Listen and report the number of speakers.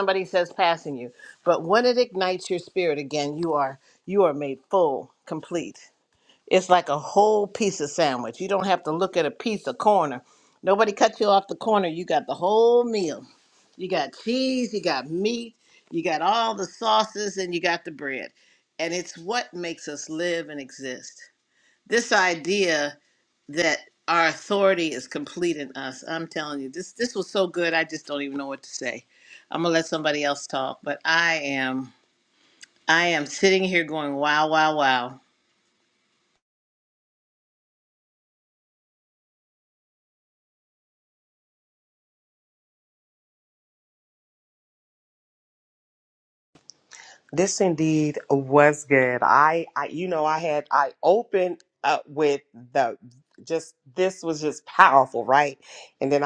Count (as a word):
two